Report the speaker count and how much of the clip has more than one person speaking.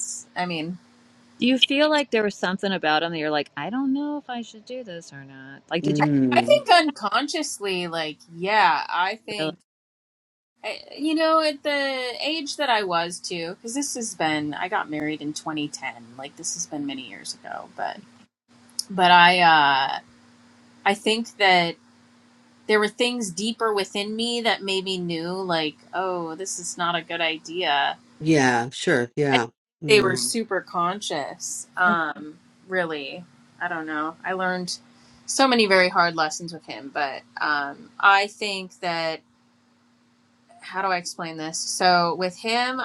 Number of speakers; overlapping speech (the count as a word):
three, about 3%